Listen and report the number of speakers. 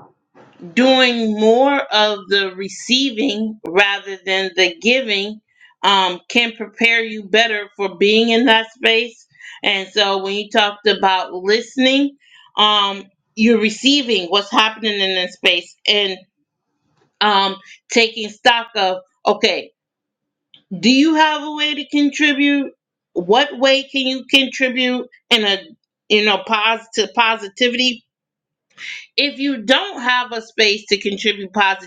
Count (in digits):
1